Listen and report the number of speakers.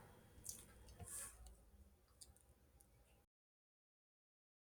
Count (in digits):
0